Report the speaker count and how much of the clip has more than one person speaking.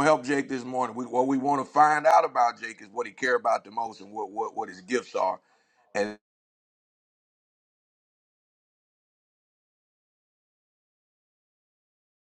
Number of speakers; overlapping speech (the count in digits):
1, no overlap